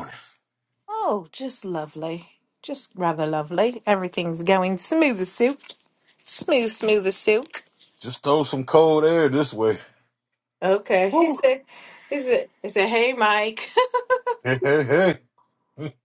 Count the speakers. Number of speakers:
2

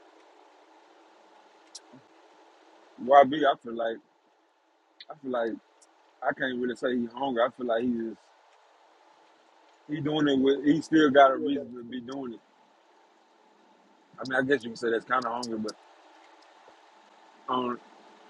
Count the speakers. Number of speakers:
1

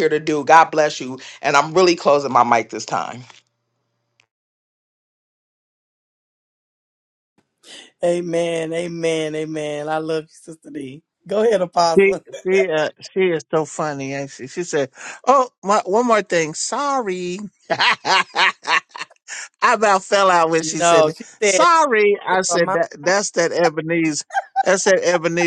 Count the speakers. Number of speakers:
3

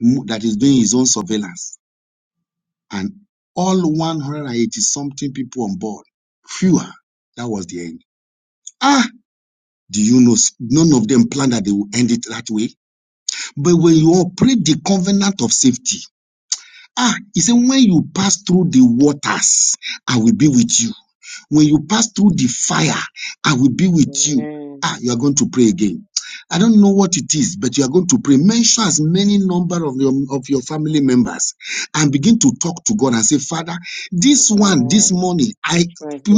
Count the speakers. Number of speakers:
2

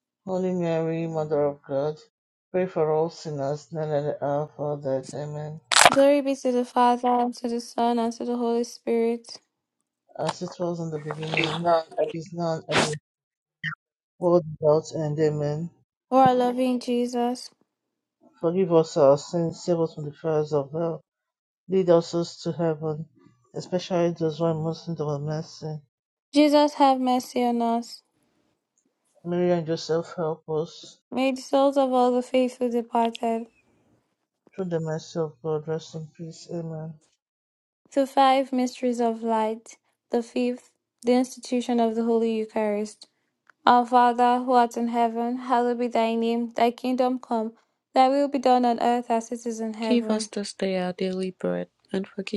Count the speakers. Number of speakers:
3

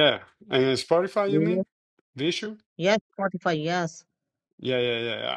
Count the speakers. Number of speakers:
2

